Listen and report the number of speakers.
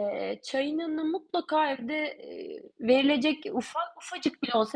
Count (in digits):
1